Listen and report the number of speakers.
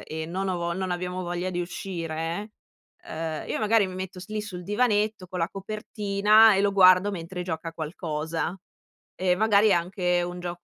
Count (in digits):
1